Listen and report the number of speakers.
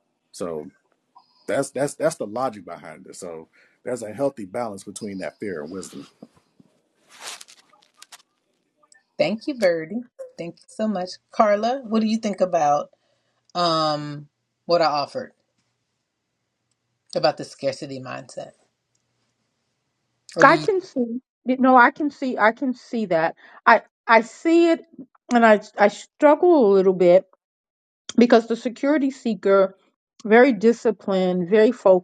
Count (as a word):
three